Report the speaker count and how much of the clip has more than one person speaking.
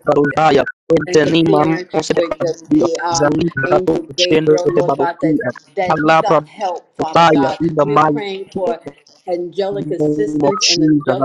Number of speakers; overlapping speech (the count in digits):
2, about 61%